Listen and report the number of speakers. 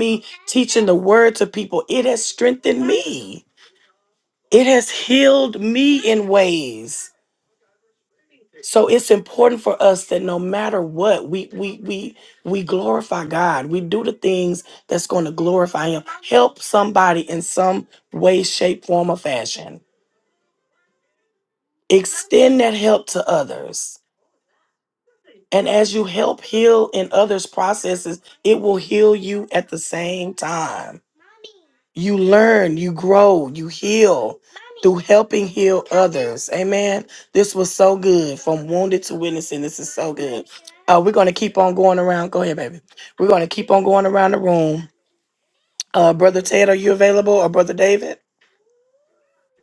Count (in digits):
1